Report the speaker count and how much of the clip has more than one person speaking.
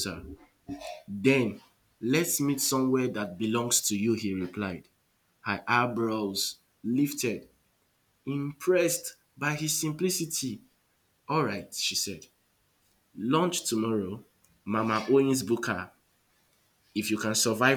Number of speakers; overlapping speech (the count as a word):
one, no overlap